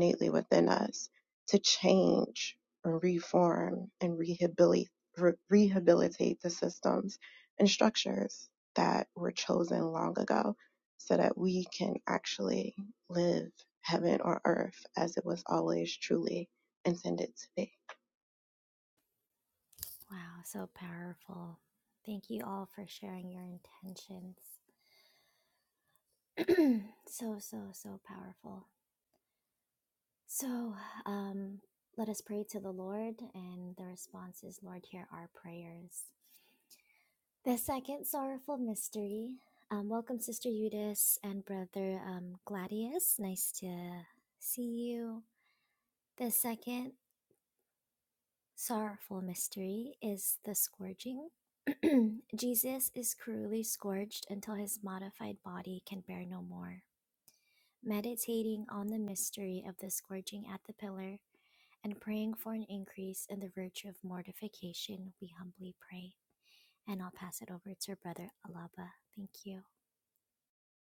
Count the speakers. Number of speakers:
two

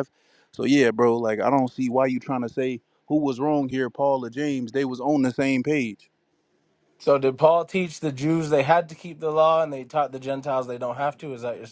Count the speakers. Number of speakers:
two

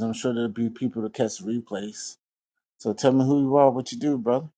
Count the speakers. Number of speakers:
one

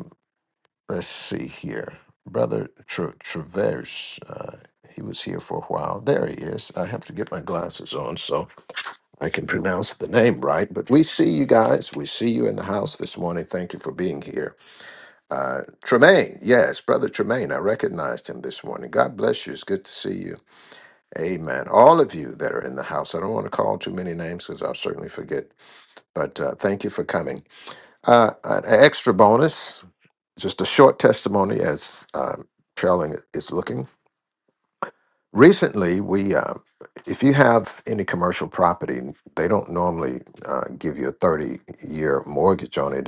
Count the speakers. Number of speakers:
one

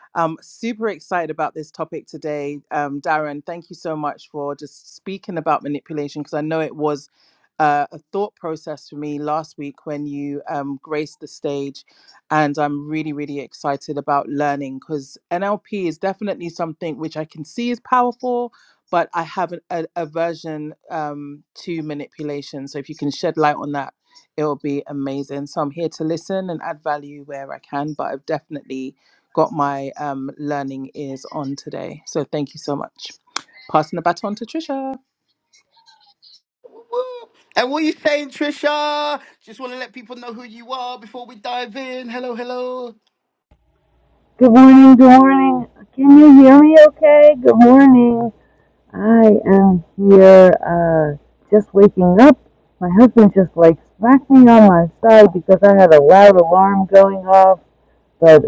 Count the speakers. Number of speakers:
three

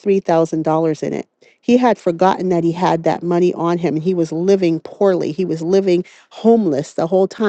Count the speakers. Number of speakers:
one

